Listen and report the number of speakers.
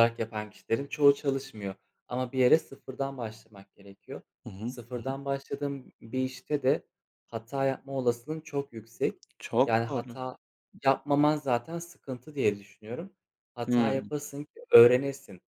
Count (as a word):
two